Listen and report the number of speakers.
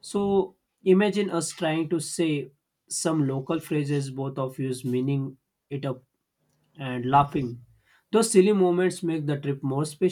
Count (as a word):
one